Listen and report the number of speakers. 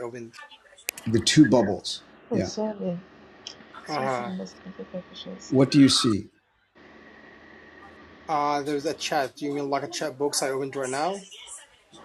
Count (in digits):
3